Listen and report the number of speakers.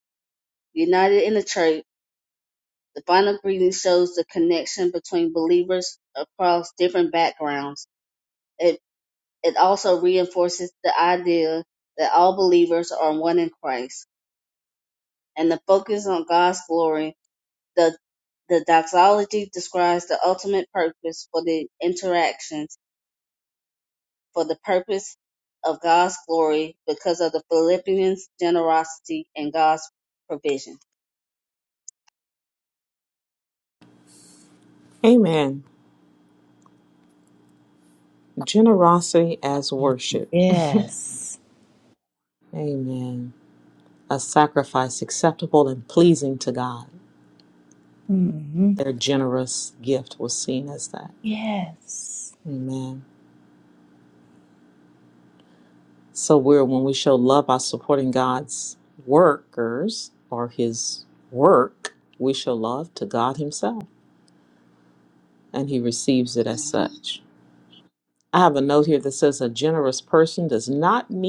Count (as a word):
three